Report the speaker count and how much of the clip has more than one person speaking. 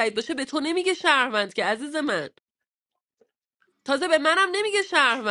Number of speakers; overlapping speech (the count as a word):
one, no overlap